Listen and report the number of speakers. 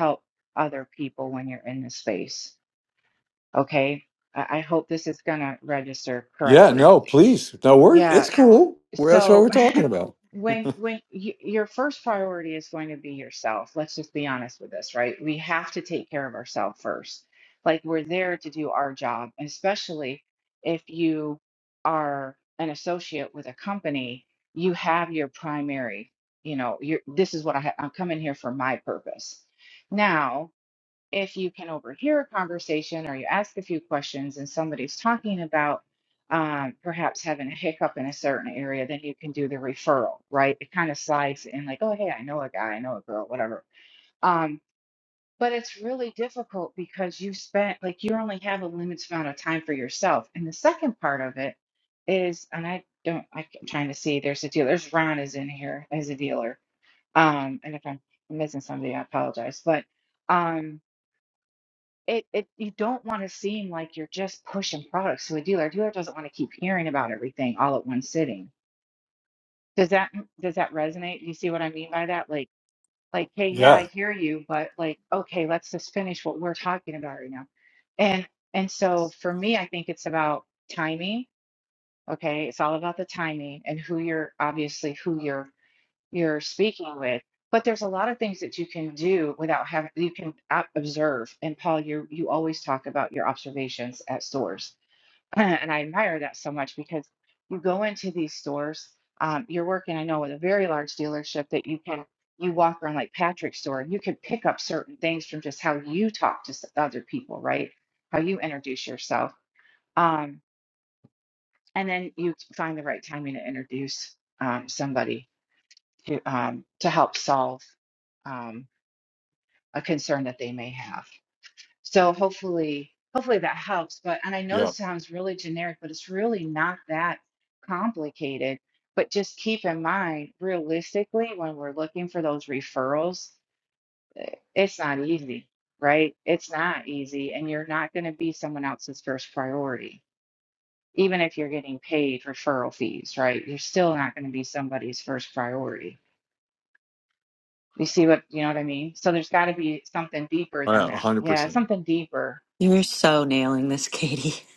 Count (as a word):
three